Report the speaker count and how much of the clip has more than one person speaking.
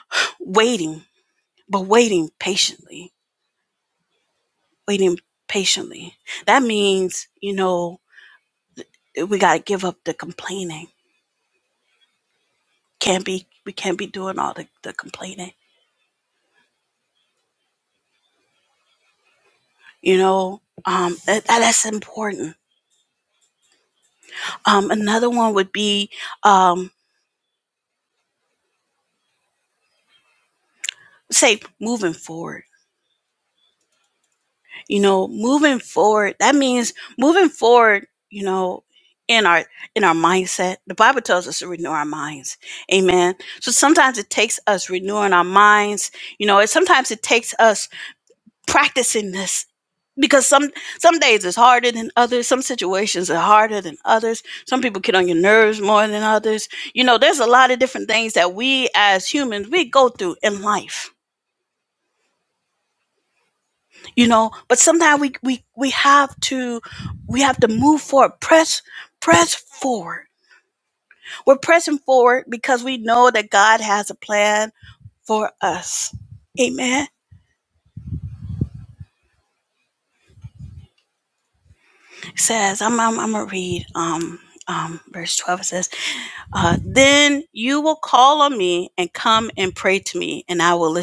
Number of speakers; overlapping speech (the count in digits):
1, no overlap